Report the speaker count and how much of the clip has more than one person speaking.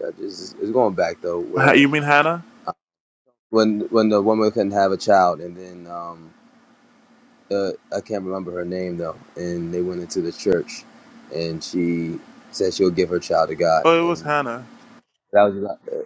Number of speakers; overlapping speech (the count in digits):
2, about 5%